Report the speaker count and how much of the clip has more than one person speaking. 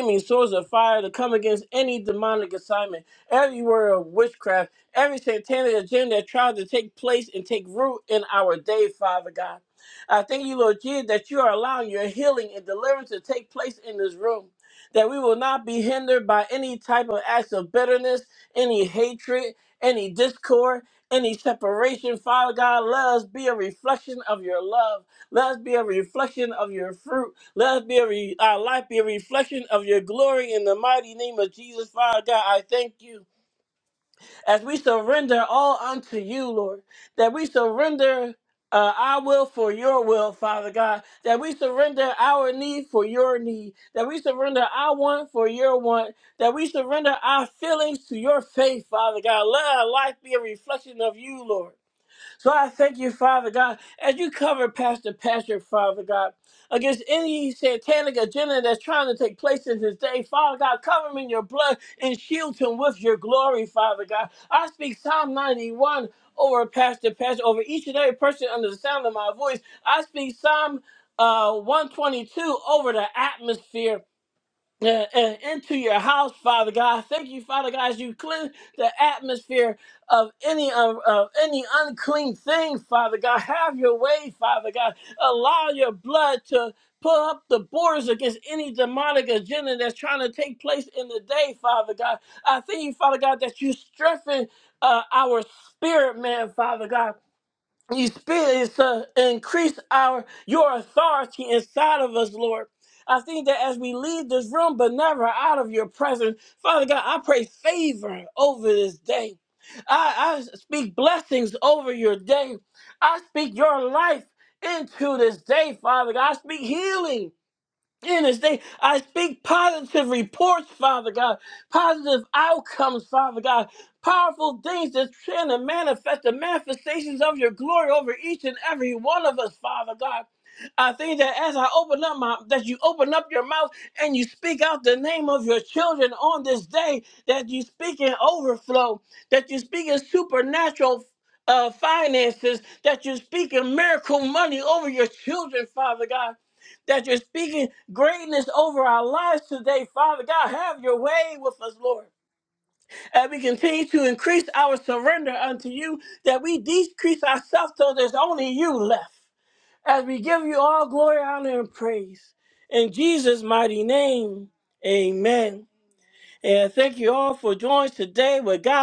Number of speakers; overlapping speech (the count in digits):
1, no overlap